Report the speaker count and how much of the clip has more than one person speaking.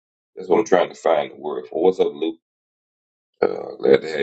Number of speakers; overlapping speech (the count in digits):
1, no overlap